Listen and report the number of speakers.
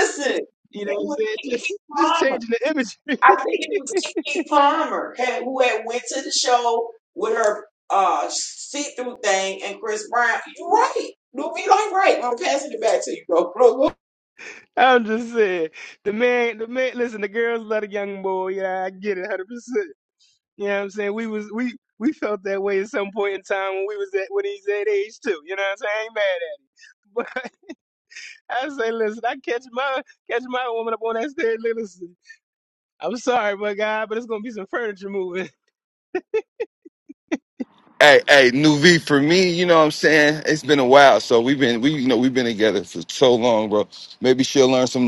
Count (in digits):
3